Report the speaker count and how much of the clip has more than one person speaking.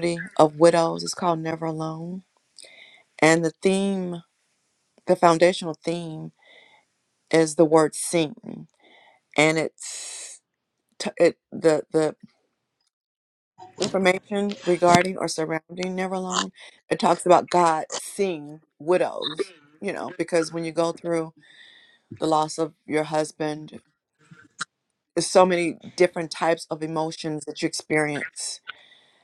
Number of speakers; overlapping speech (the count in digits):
1, no overlap